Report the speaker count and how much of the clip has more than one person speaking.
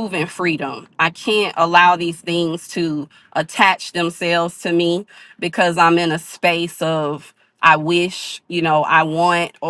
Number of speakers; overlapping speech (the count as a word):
one, no overlap